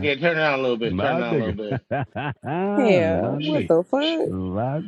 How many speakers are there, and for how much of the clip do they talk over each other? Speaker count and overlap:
three, about 36%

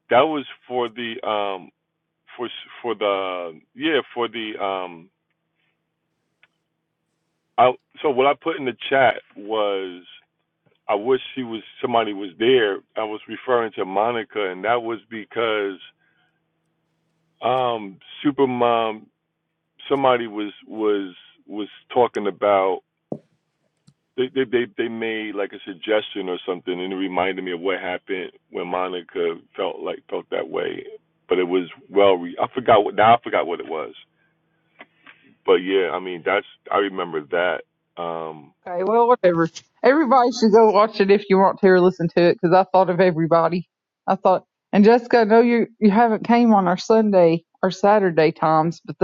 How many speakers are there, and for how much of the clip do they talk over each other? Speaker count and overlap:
two, no overlap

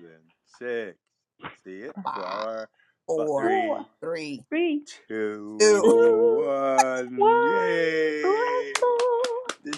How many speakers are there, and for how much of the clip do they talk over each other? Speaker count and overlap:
three, about 30%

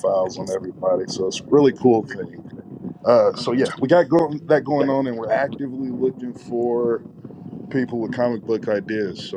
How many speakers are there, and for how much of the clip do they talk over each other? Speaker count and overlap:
one, no overlap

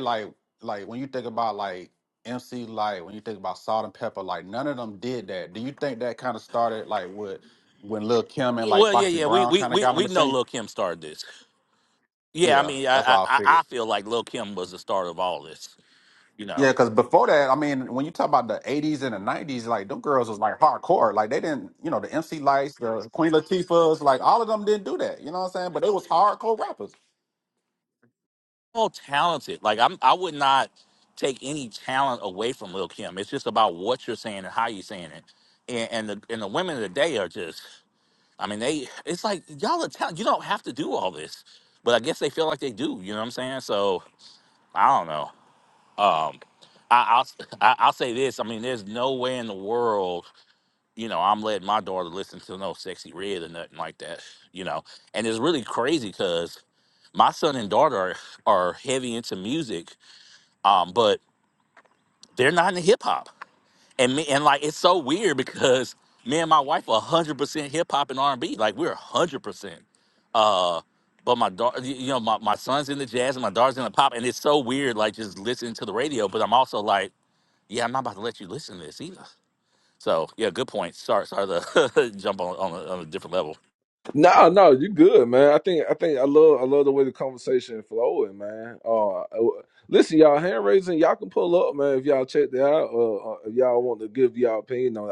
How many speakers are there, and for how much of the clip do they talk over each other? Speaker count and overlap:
three, about 3%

